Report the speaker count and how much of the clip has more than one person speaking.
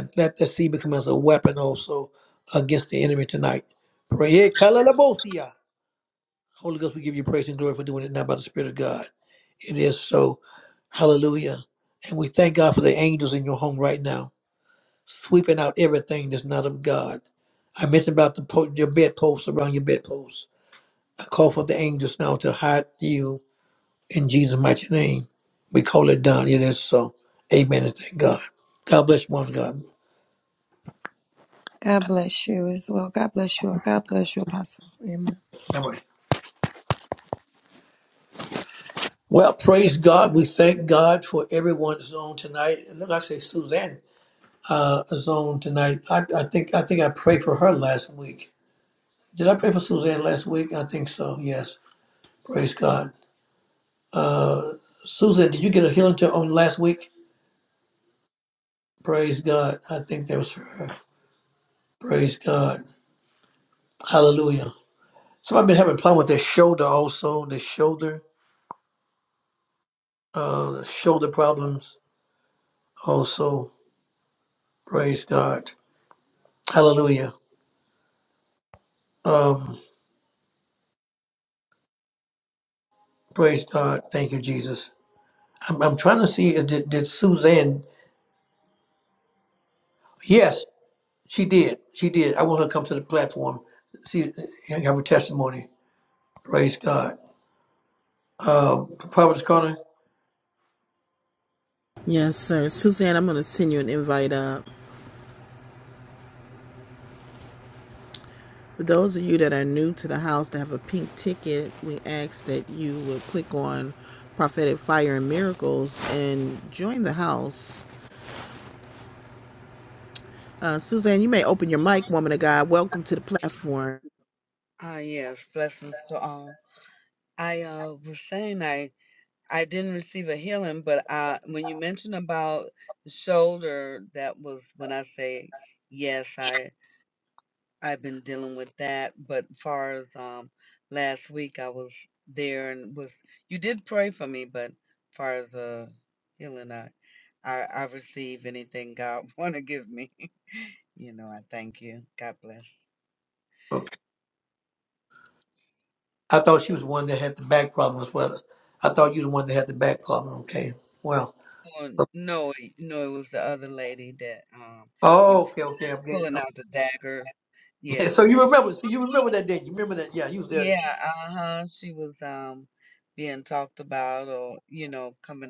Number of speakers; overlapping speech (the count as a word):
four, about 1%